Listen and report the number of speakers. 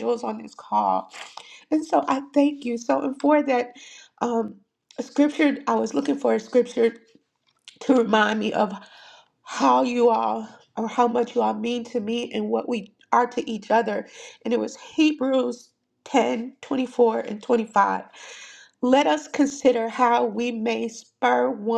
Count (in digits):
1